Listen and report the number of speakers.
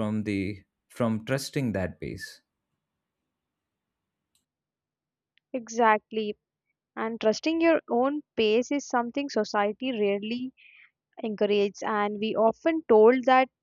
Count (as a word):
two